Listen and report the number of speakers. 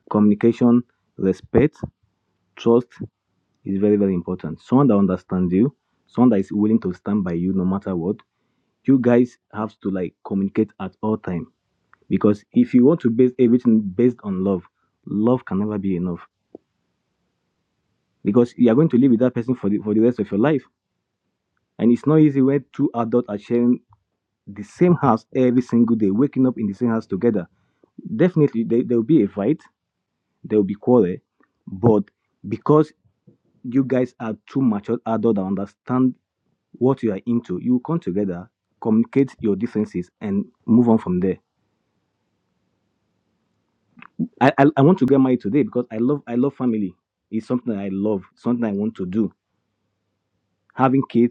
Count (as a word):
one